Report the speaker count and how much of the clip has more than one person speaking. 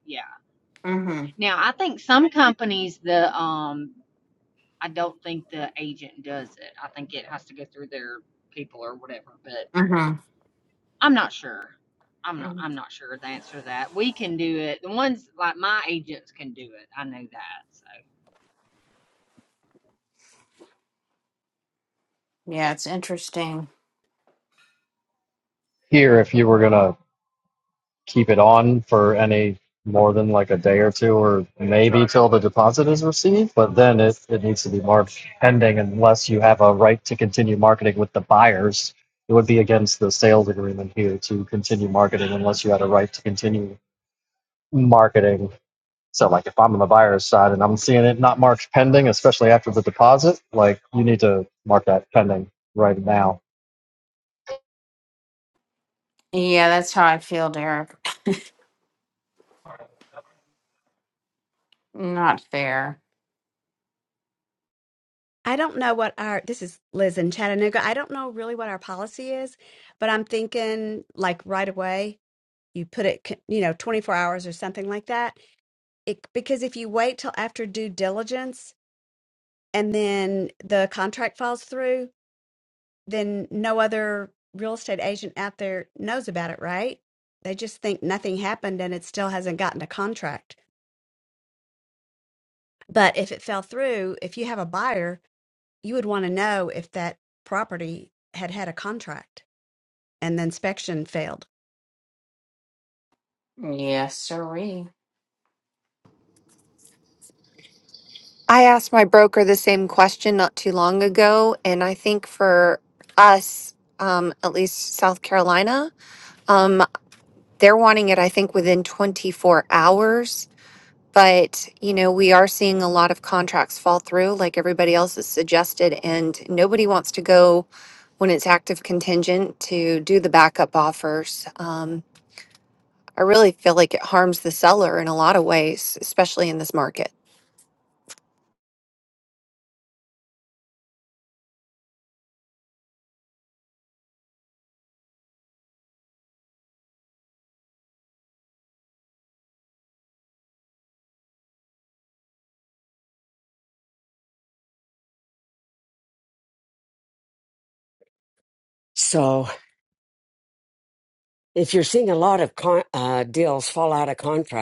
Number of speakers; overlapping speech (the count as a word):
six, under 1%